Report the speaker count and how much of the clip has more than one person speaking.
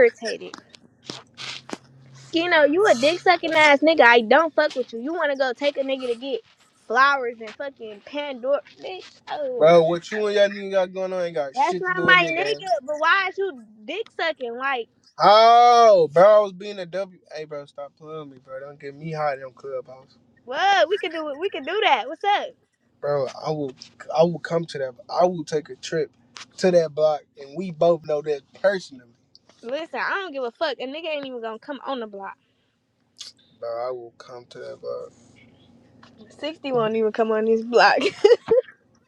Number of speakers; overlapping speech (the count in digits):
2, about 3%